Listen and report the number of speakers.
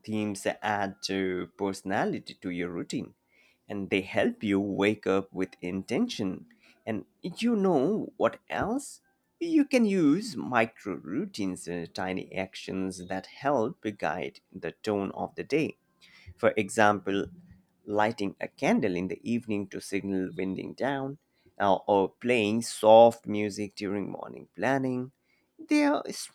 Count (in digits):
1